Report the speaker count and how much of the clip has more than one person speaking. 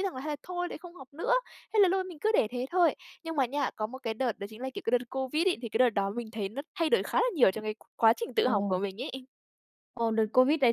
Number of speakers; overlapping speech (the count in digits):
2, about 3%